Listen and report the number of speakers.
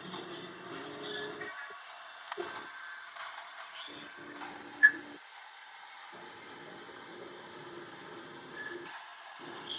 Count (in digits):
0